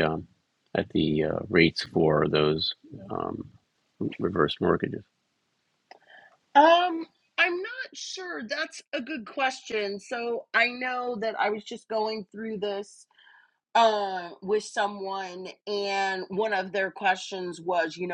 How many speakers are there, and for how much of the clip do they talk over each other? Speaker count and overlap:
two, no overlap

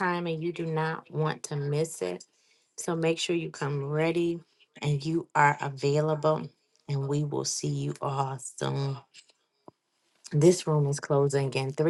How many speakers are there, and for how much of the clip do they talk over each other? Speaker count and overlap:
one, no overlap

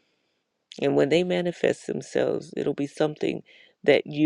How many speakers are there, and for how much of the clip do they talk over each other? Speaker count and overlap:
one, no overlap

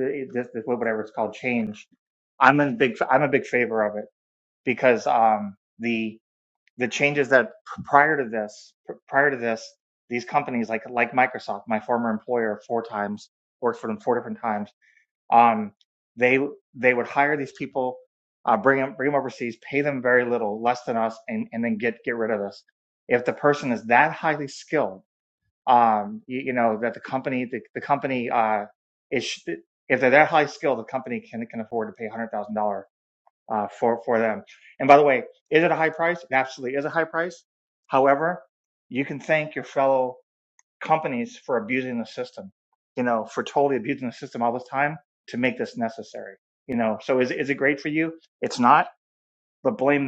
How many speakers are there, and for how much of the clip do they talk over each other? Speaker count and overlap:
one, no overlap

